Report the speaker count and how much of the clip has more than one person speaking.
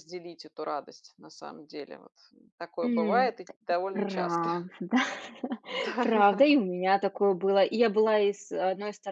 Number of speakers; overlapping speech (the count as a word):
two, about 18%